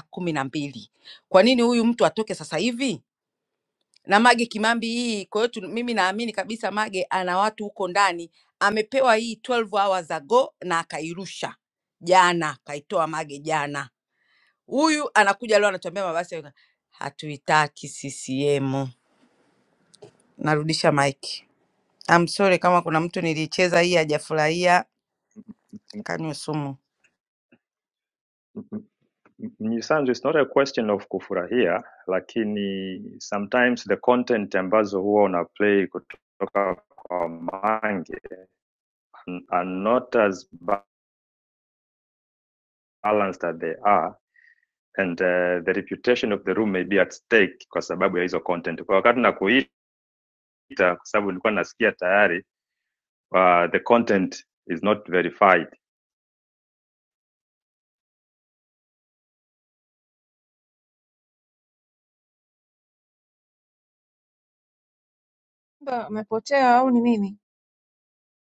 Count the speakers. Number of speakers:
3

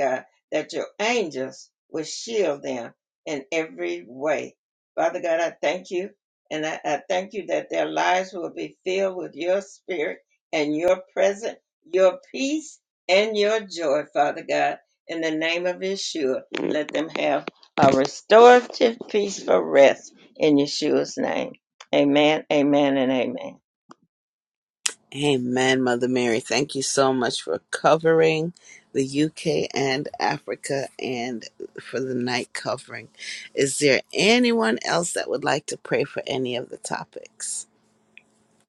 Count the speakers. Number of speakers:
2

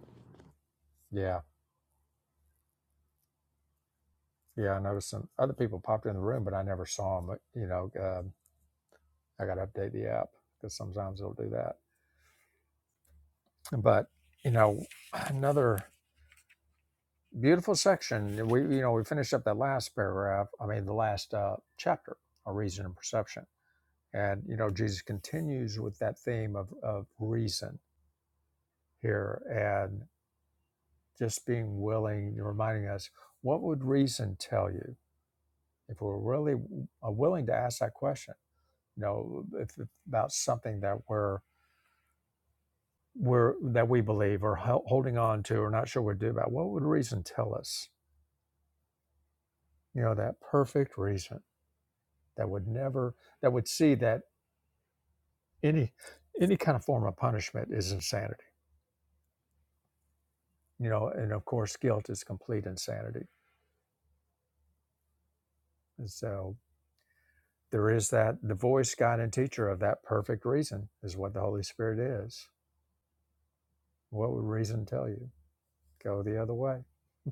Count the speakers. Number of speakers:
1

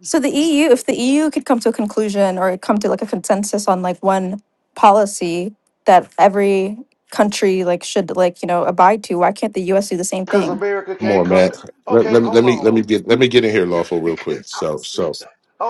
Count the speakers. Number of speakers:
3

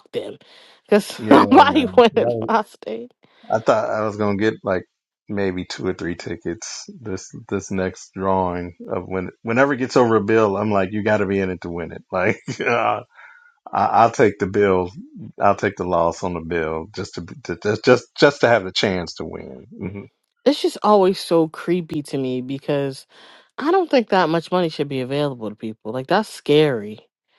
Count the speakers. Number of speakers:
2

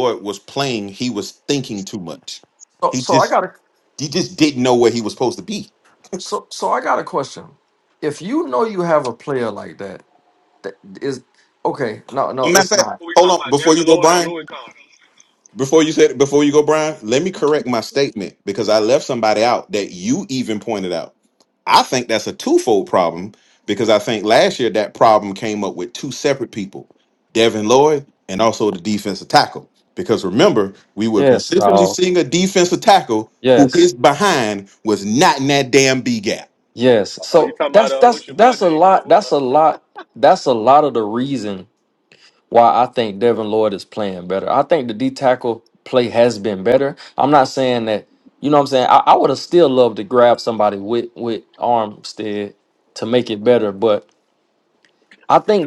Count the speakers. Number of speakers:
3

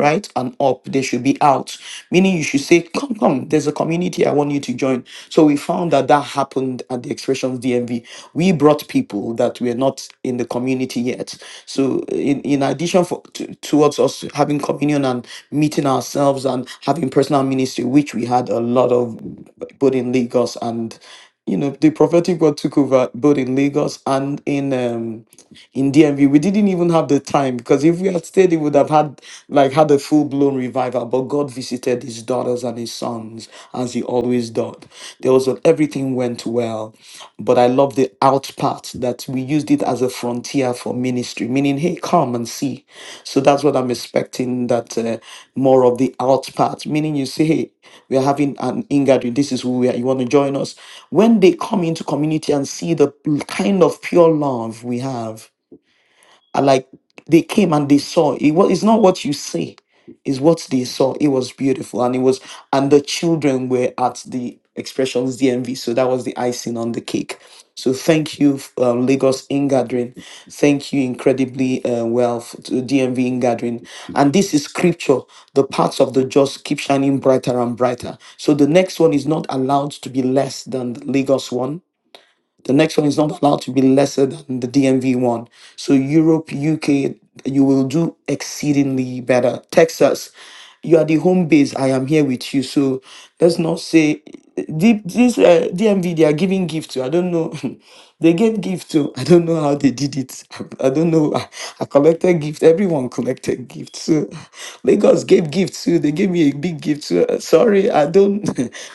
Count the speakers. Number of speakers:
1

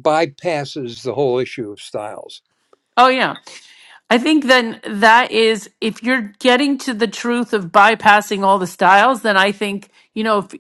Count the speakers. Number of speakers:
2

